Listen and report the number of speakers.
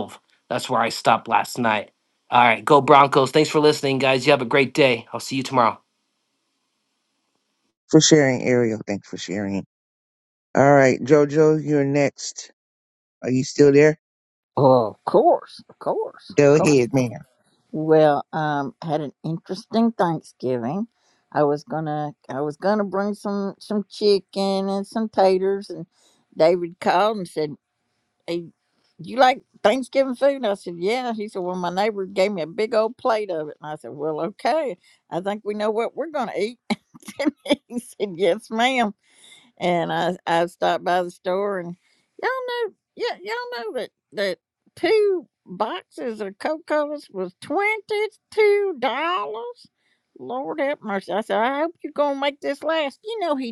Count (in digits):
3